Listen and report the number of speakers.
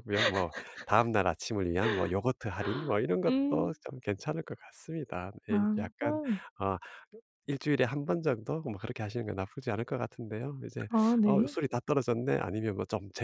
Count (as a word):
two